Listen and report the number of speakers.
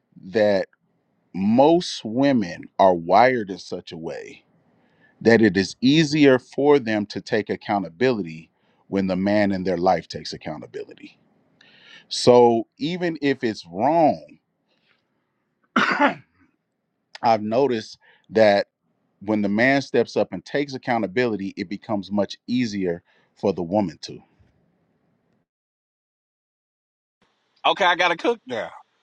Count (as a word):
two